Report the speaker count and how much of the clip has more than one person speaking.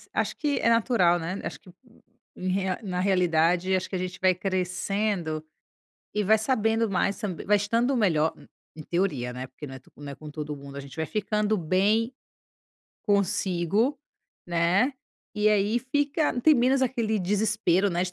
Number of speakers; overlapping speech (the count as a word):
one, no overlap